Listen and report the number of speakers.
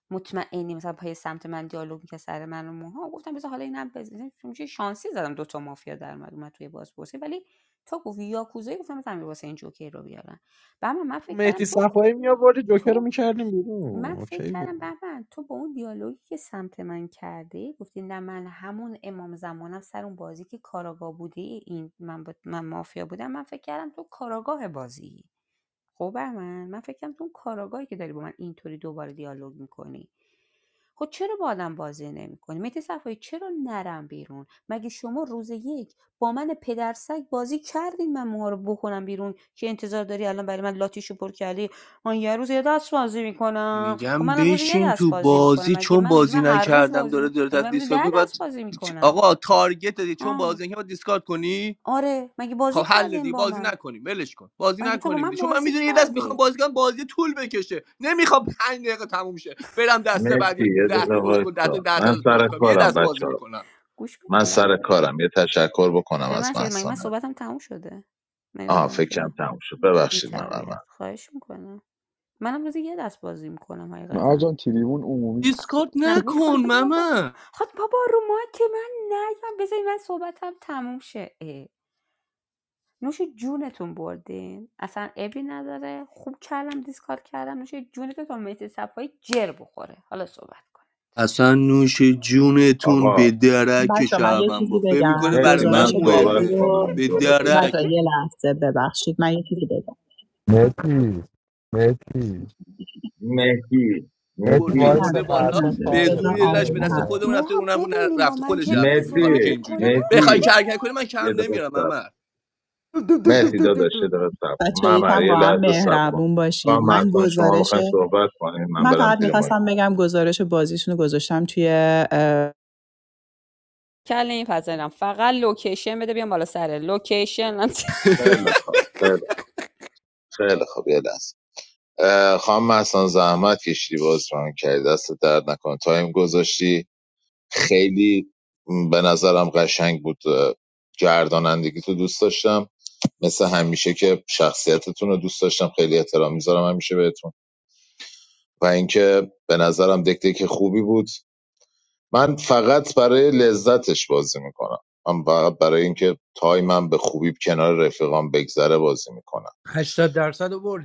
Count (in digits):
7